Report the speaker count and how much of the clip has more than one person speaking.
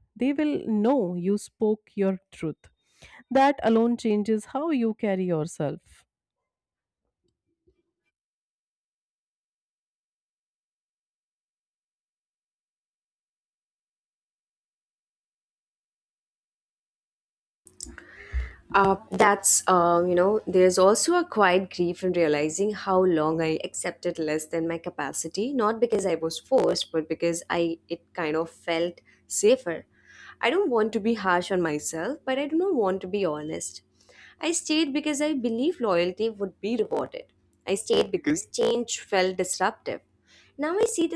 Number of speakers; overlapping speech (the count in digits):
2, no overlap